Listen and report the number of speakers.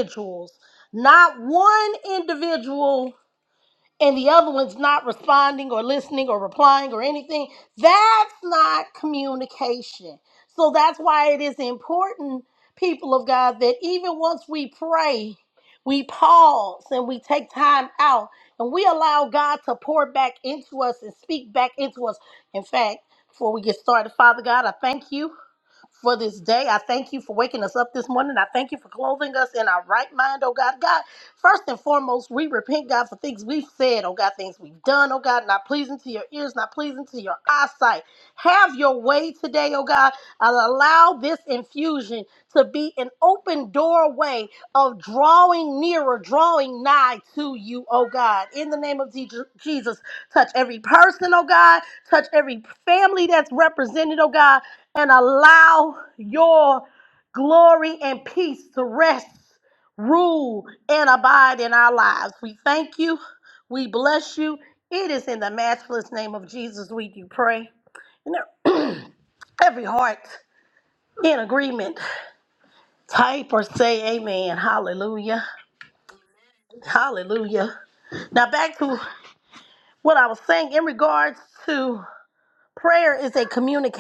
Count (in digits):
1